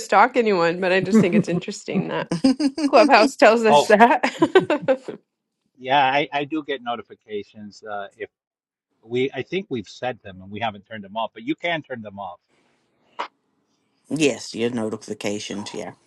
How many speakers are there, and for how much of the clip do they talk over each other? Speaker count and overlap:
three, about 2%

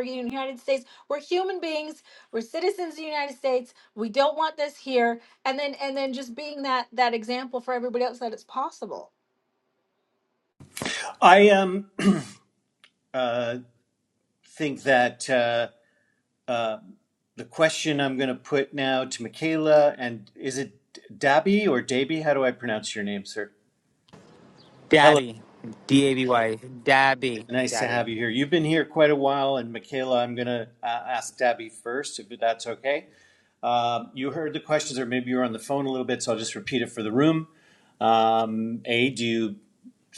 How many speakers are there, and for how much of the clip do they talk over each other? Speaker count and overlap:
three, about 2%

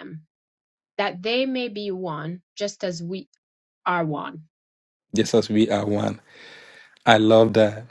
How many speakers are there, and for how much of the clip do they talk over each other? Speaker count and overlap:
two, no overlap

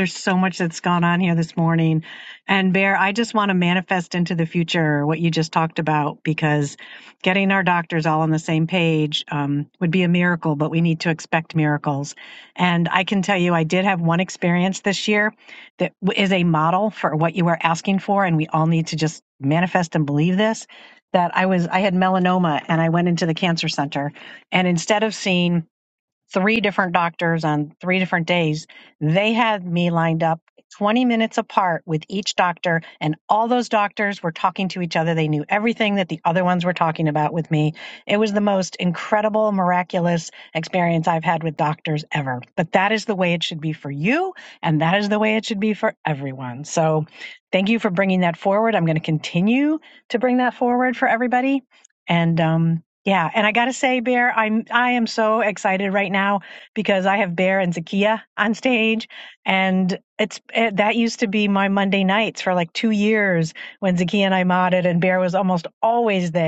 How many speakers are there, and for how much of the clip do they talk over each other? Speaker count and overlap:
one, no overlap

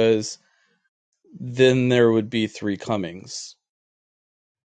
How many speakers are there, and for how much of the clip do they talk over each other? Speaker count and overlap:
one, no overlap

